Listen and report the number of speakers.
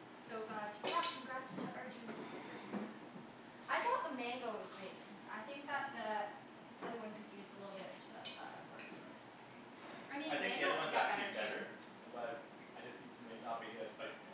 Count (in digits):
2